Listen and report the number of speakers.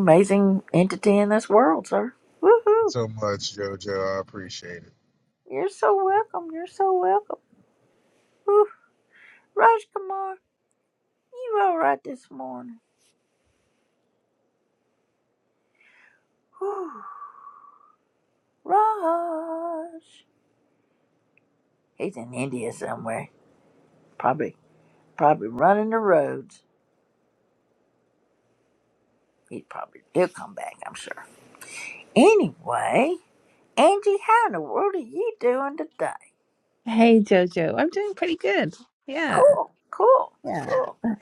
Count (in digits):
3